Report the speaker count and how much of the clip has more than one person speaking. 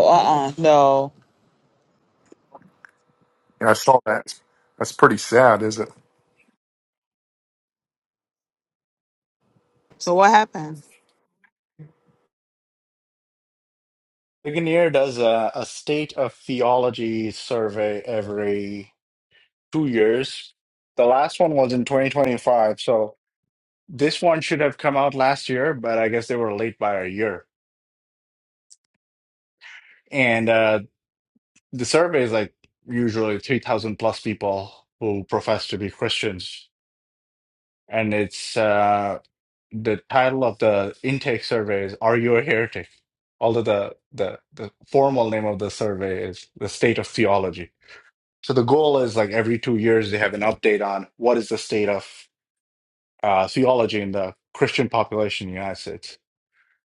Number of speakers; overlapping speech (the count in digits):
3, no overlap